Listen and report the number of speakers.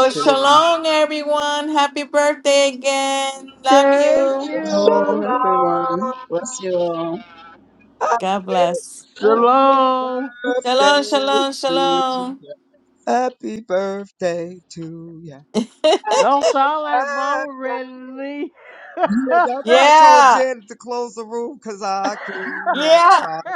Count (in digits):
4